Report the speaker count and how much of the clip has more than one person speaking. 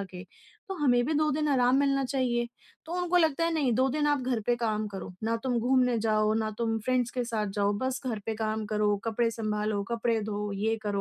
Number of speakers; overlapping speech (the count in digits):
1, no overlap